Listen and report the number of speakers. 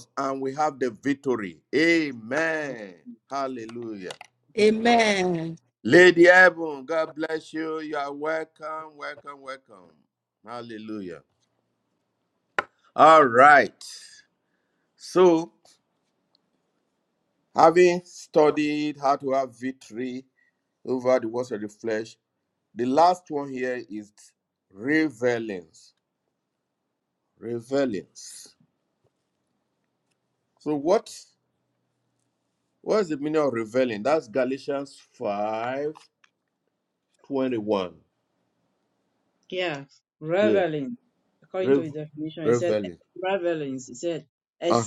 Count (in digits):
3